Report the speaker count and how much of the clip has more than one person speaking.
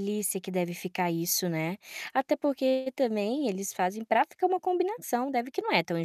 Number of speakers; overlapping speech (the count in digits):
1, no overlap